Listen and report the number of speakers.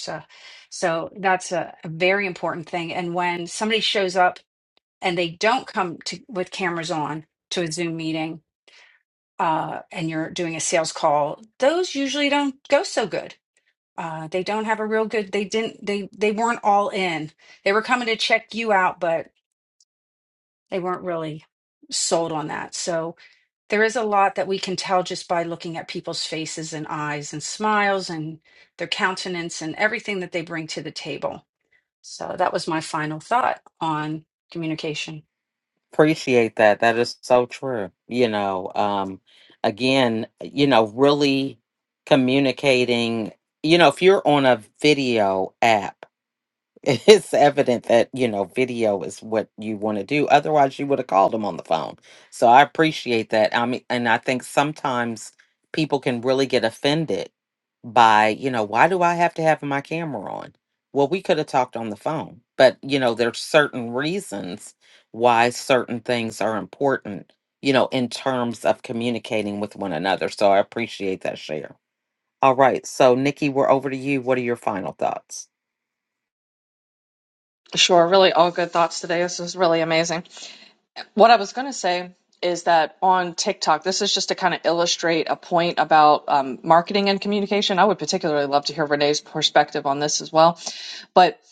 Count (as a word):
three